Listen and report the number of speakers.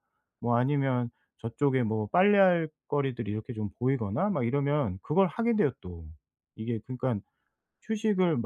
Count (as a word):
one